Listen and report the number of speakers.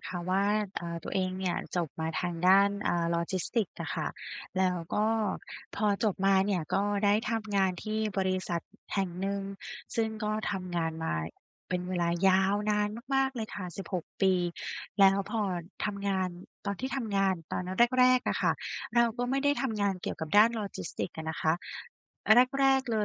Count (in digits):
1